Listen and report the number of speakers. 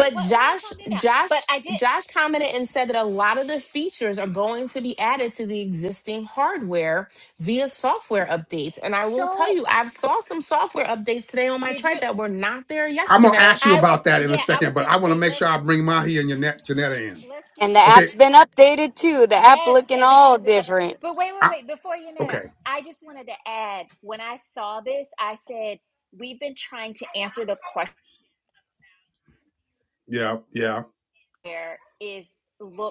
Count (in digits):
4